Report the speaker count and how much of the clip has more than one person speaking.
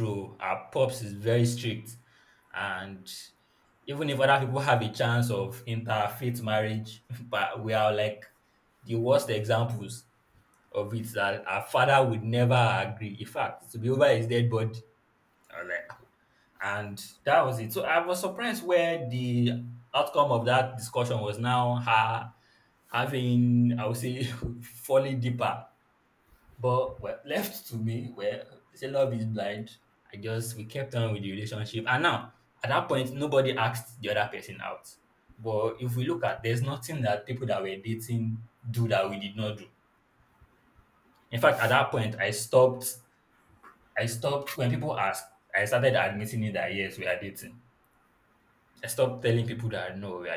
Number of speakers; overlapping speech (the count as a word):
one, no overlap